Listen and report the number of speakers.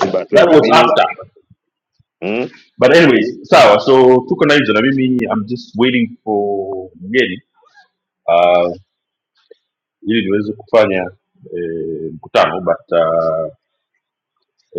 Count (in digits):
2